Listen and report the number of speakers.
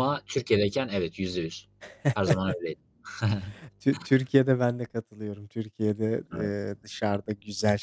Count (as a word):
two